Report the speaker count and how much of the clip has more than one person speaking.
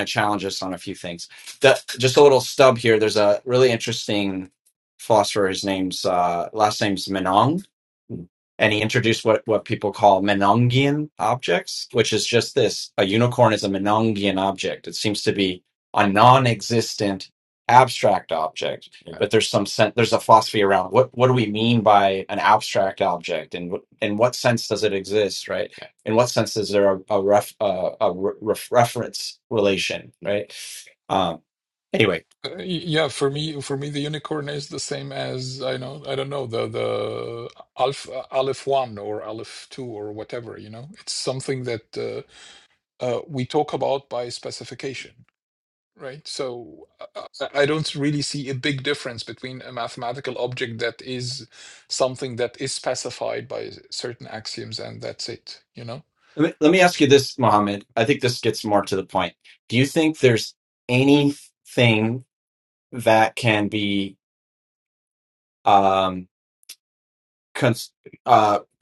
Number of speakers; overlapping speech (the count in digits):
2, no overlap